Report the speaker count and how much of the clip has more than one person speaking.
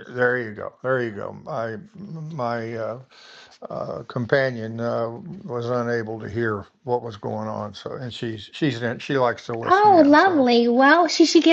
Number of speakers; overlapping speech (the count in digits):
2, about 7%